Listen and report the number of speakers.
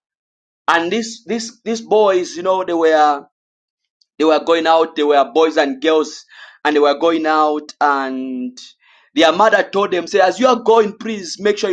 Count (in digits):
1